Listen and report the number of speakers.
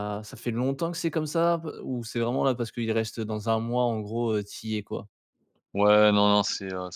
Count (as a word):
two